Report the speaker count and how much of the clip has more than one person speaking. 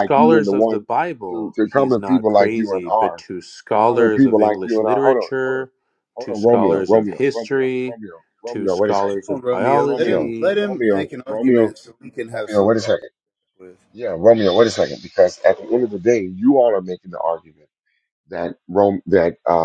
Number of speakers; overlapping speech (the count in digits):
3, about 51%